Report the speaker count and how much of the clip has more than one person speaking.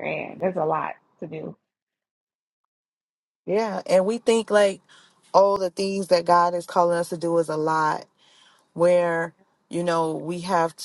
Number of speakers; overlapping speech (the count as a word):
two, no overlap